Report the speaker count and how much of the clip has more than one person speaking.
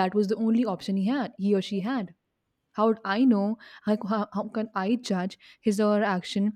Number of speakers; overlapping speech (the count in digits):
1, no overlap